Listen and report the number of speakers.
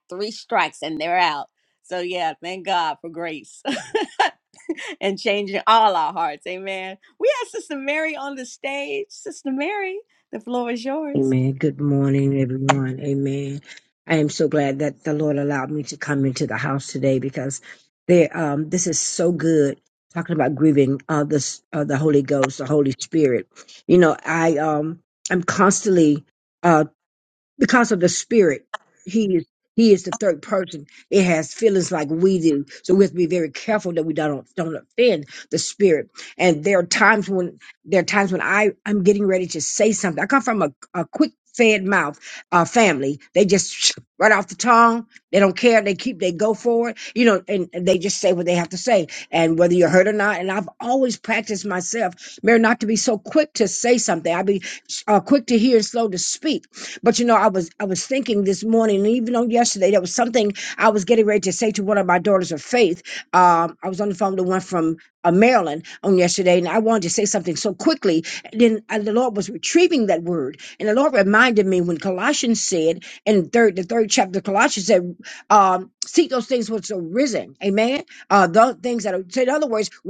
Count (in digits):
2